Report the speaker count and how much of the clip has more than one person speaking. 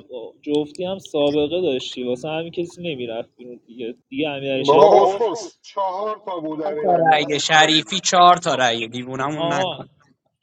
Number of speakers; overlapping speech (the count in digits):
3, about 23%